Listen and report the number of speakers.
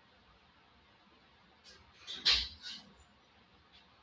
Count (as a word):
zero